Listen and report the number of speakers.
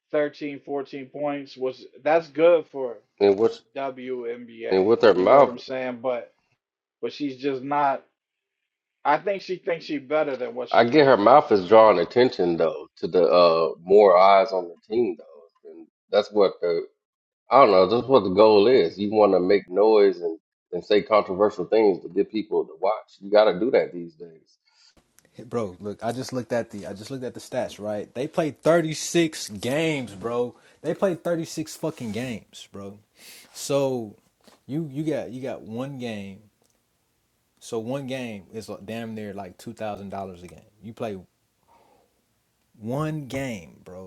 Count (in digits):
3